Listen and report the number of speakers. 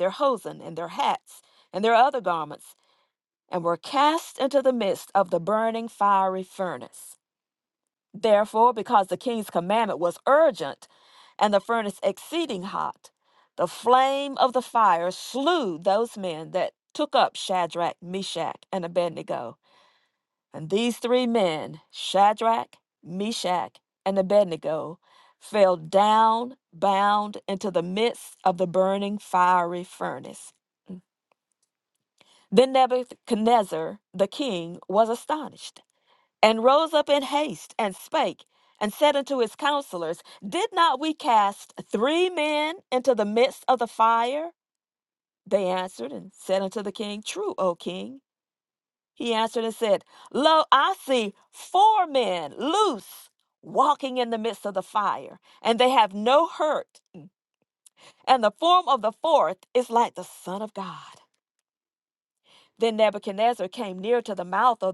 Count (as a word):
one